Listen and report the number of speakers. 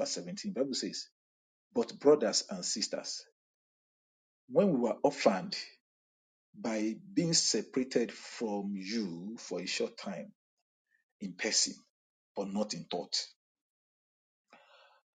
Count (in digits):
1